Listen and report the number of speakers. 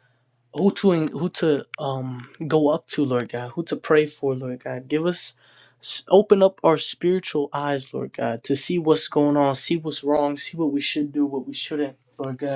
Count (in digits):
1